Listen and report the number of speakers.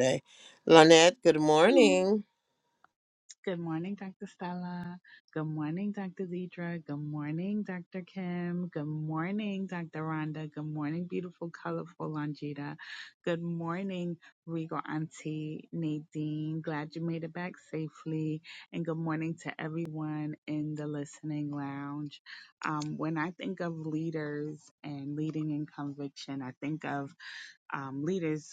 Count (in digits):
2